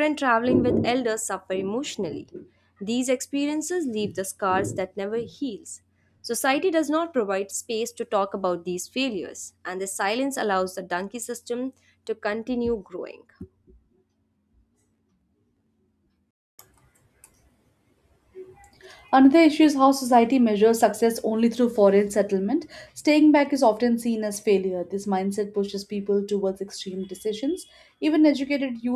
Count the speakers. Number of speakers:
two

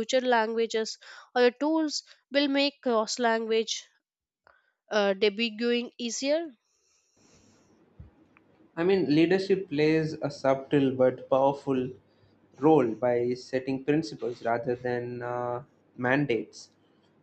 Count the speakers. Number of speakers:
two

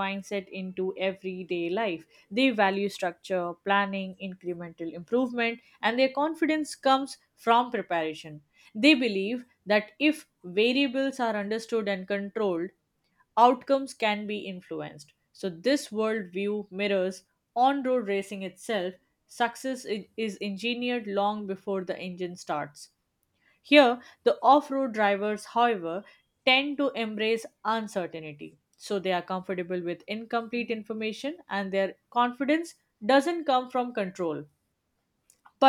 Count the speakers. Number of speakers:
one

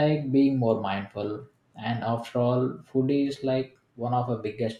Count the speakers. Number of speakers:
one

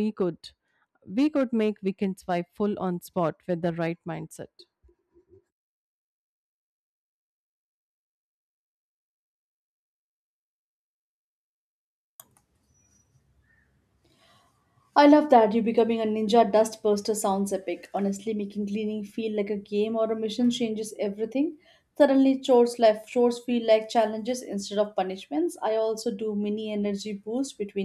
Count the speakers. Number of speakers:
two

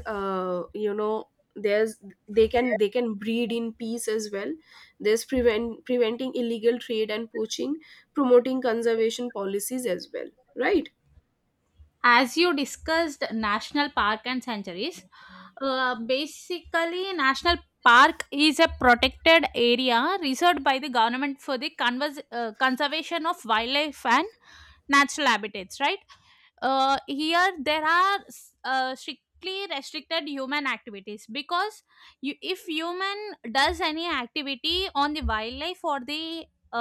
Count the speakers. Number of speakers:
two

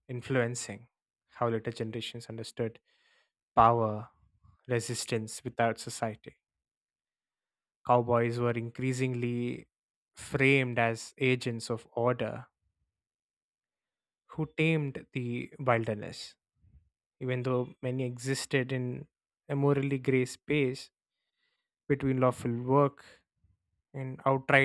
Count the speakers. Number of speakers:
one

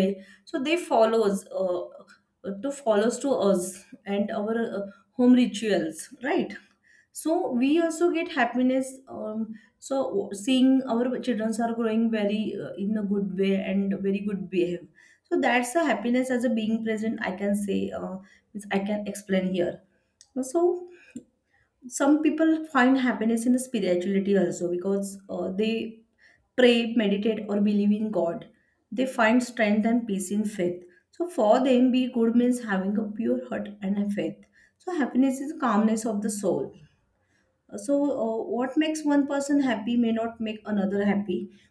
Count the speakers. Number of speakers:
one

